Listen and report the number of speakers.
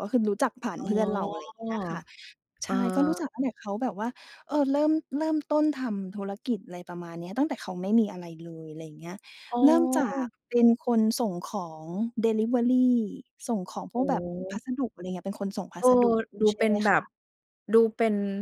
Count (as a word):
two